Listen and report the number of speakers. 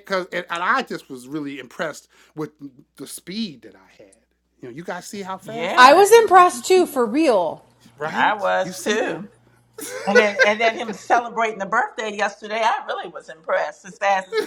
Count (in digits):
3